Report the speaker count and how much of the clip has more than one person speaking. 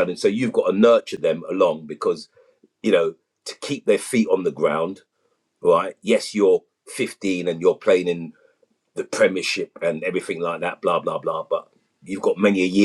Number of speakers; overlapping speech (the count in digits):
1, no overlap